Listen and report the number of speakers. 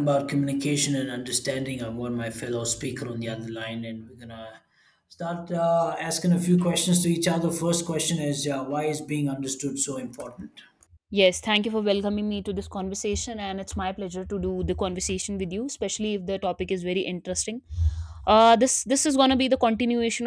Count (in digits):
2